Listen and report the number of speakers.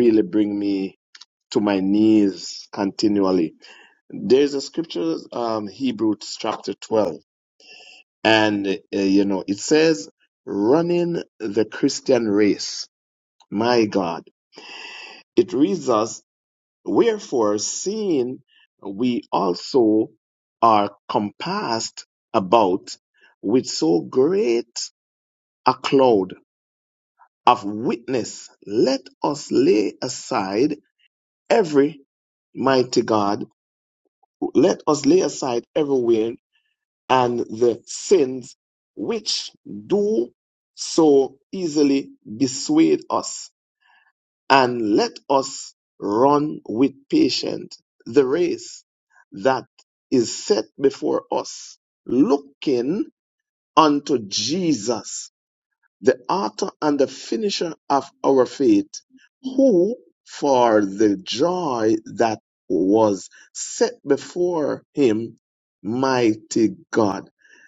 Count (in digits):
1